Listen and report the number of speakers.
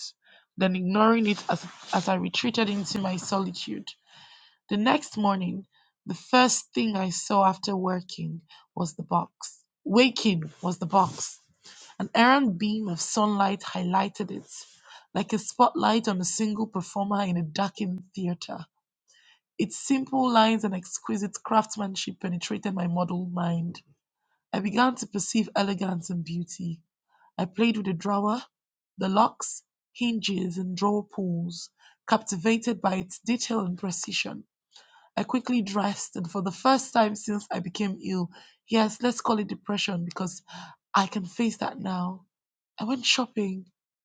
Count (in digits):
1